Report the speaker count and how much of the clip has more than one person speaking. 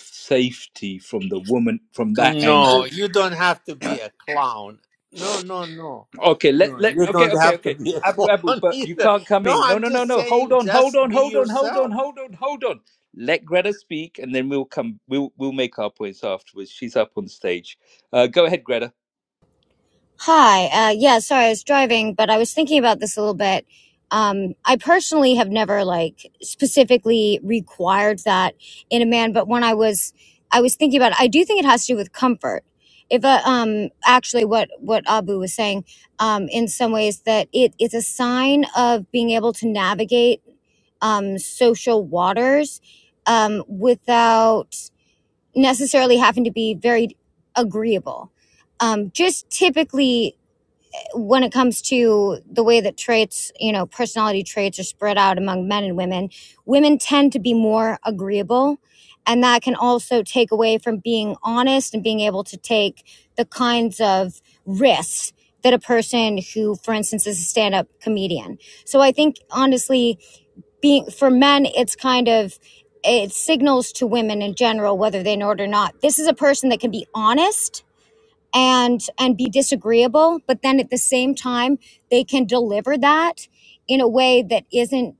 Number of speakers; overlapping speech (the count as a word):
three, about 7%